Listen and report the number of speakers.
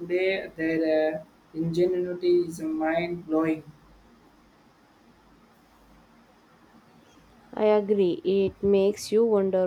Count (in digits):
2